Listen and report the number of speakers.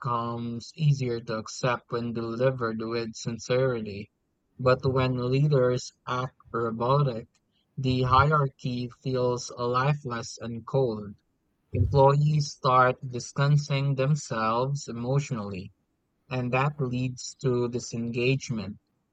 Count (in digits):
1